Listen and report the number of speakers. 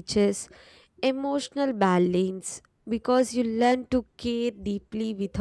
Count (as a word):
one